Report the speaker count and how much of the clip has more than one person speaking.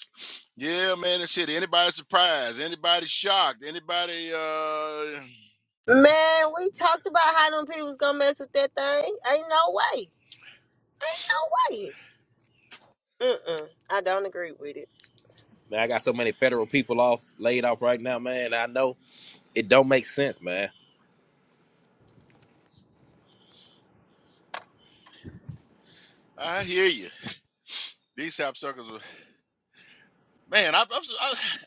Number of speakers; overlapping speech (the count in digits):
3, no overlap